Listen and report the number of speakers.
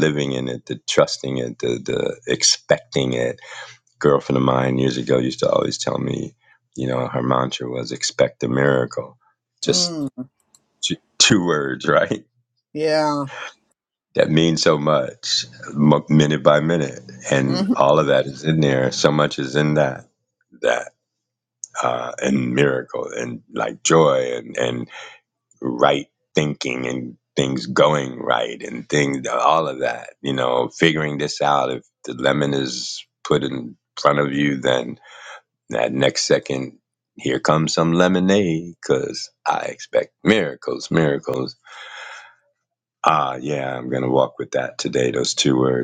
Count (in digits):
2